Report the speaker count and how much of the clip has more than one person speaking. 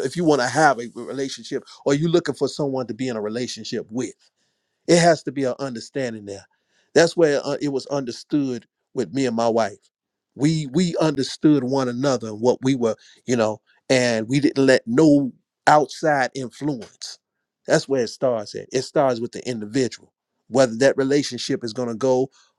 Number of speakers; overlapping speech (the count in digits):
1, no overlap